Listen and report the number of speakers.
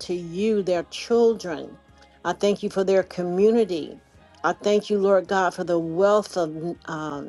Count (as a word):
one